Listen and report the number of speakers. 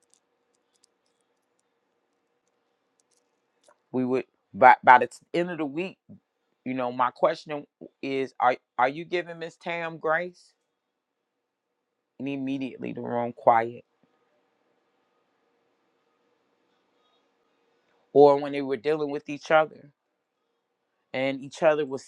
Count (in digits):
1